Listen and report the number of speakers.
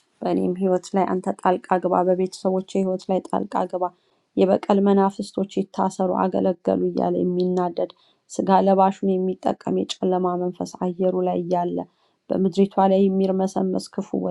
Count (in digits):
1